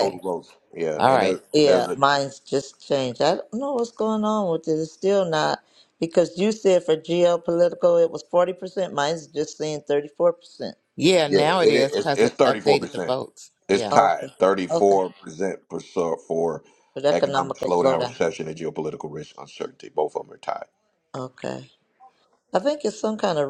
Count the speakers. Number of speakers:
3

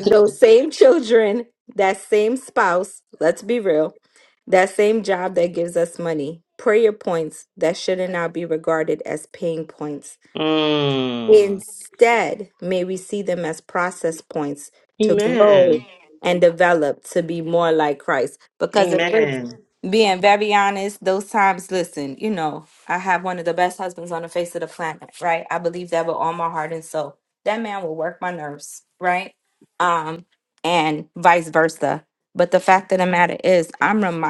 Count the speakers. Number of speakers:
2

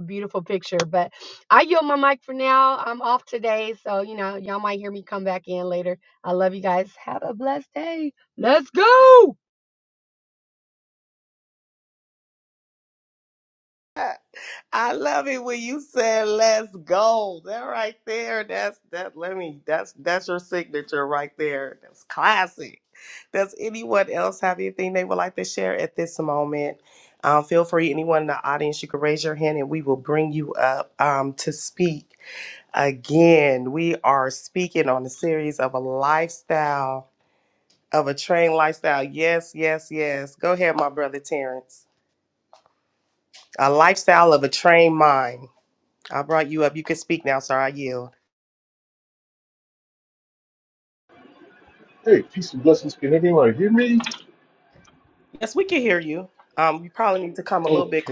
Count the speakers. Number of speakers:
3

